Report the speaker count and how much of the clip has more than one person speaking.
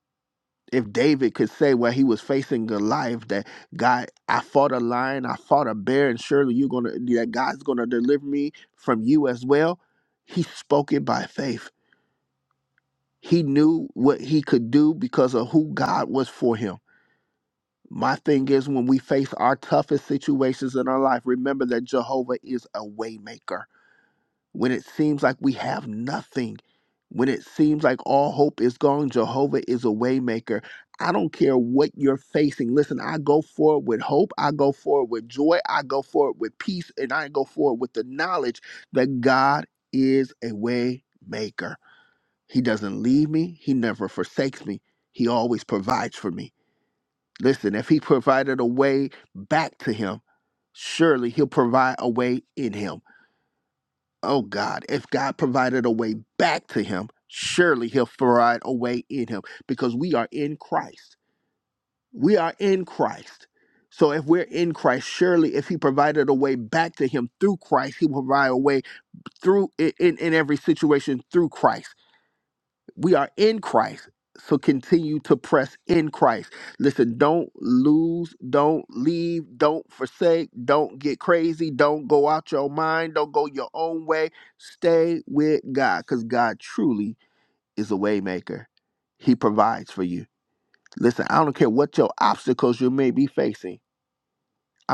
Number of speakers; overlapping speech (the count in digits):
1, no overlap